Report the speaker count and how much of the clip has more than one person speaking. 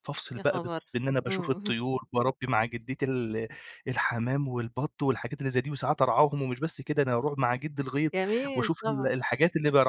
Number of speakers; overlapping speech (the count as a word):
two, about 16%